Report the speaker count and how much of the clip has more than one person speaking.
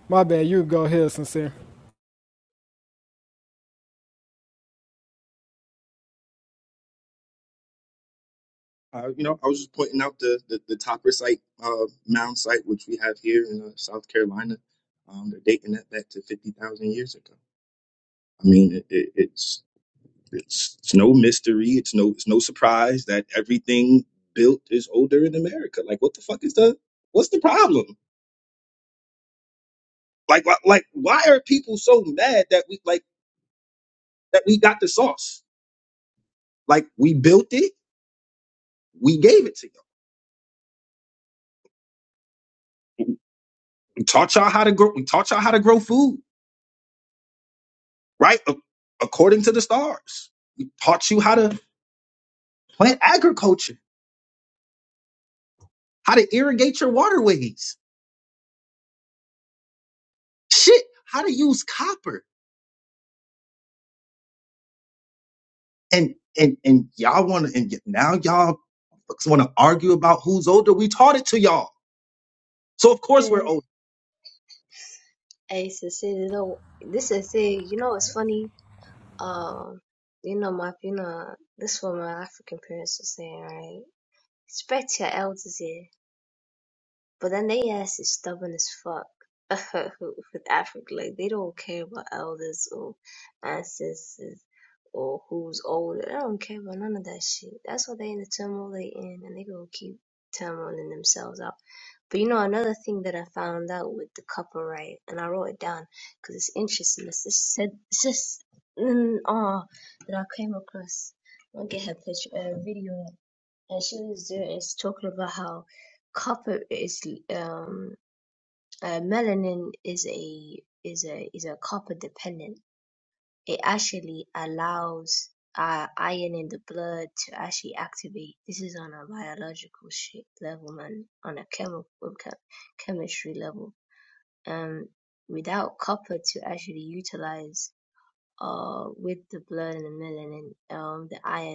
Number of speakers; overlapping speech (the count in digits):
3, under 1%